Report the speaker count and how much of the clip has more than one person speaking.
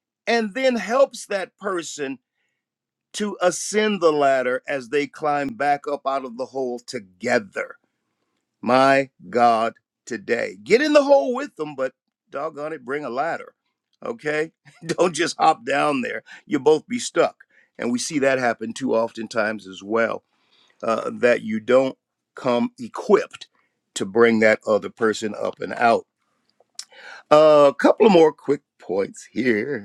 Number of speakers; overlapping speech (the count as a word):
one, no overlap